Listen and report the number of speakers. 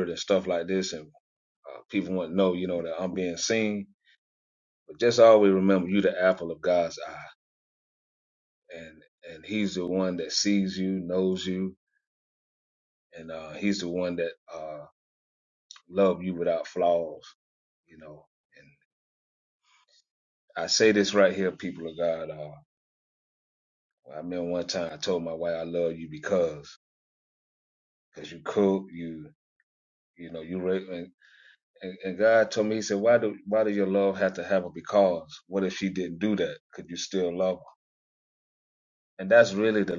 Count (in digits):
1